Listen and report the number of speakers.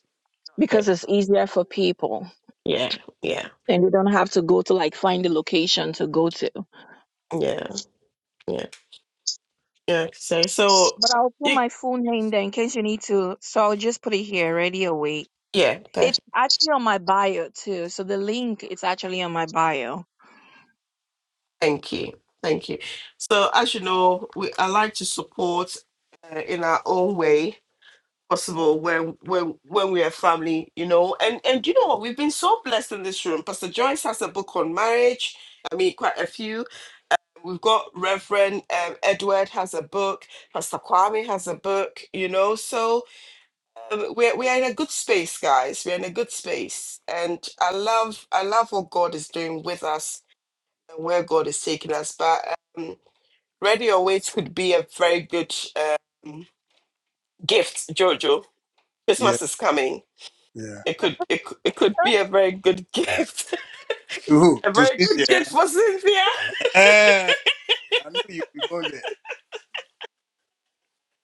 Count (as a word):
three